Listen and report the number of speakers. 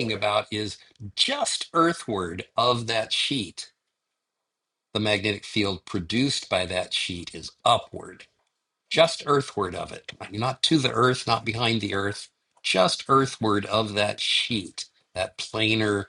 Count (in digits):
1